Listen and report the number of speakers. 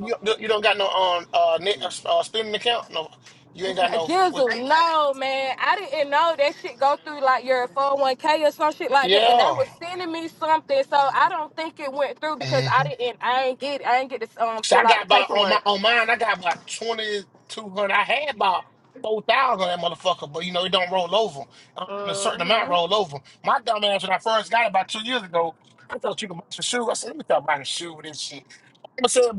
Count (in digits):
2